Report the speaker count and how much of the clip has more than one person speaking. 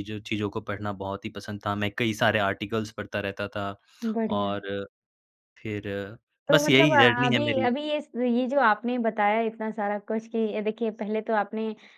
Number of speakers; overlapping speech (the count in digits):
2, about 12%